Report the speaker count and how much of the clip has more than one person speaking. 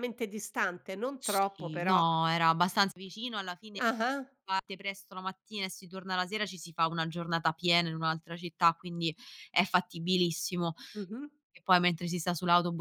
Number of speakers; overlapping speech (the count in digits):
2, about 7%